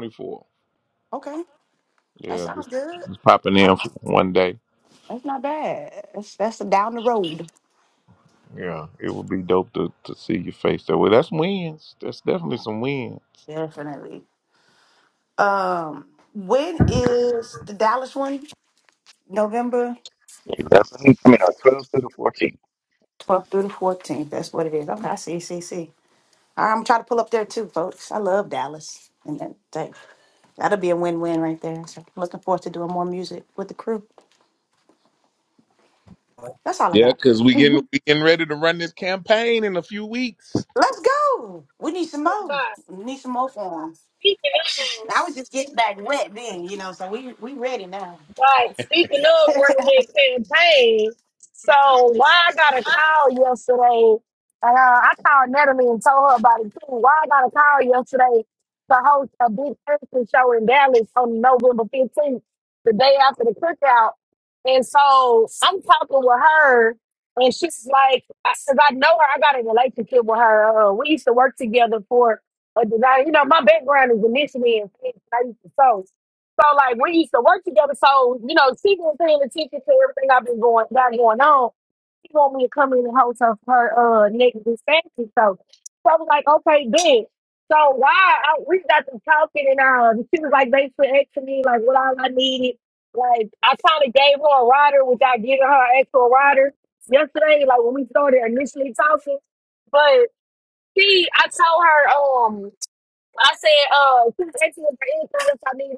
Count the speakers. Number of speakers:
4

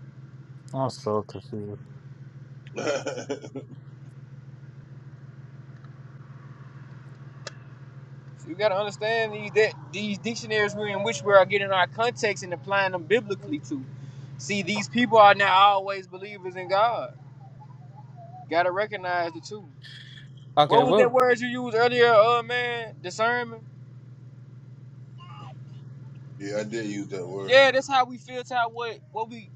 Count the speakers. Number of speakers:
3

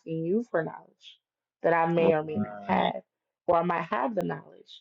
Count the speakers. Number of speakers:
1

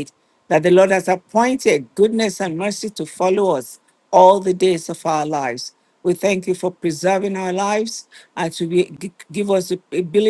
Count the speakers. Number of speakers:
1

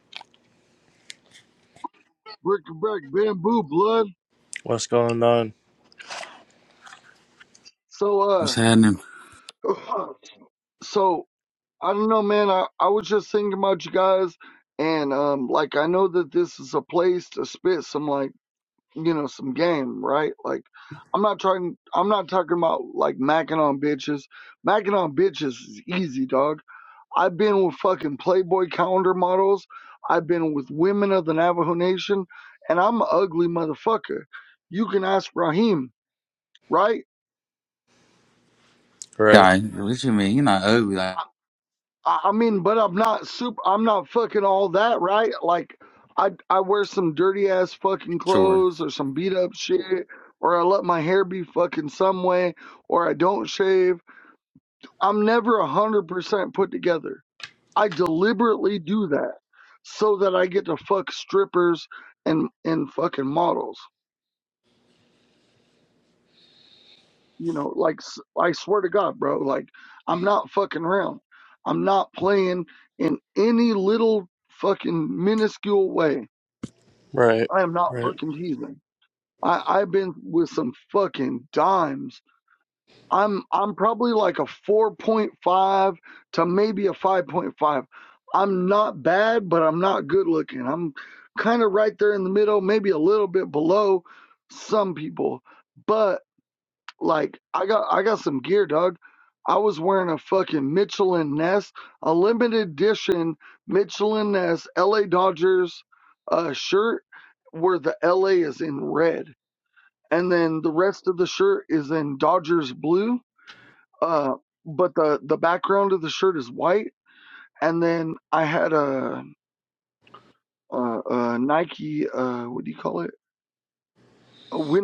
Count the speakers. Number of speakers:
3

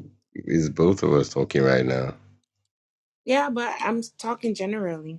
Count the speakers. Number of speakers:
2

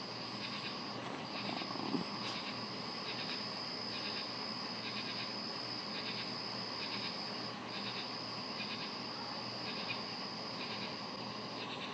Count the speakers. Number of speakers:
0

